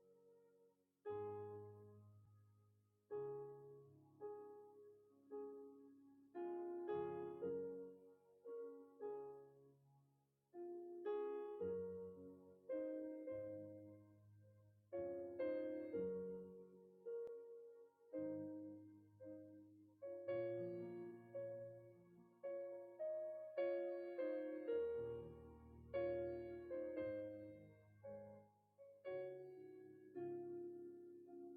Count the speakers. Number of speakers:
0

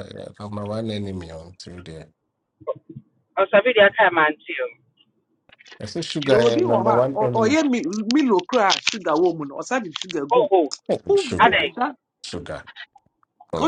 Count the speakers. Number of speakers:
3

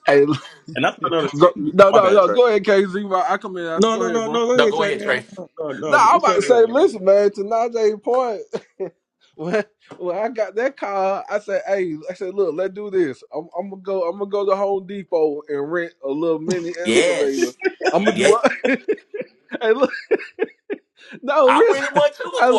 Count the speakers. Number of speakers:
3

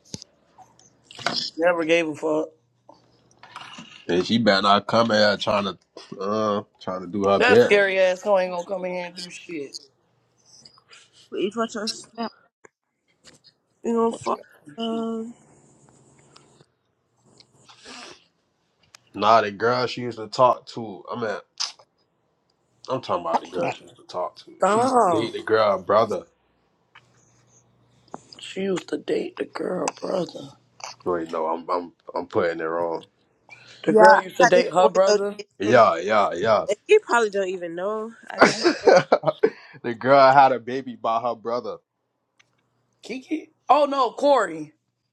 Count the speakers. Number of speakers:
3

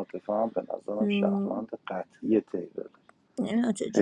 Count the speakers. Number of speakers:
2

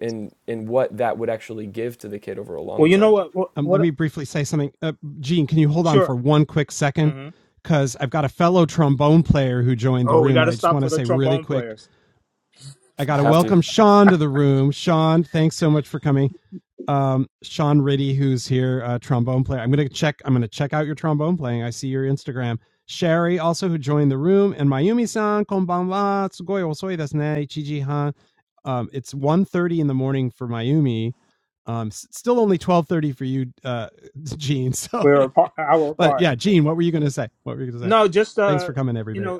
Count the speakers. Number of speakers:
3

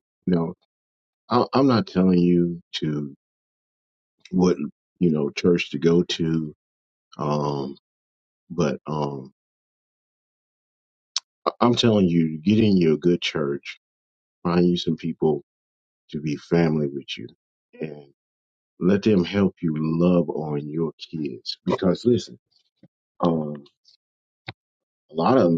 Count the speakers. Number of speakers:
1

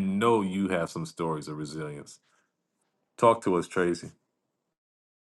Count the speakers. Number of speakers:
1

